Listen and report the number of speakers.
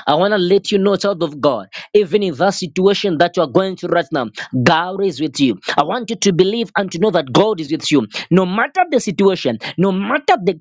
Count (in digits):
1